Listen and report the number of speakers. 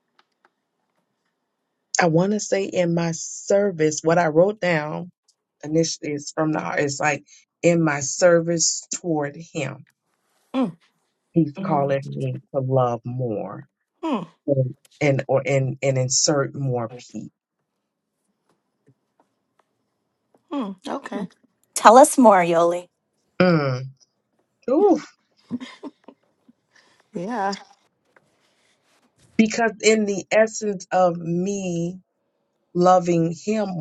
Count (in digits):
3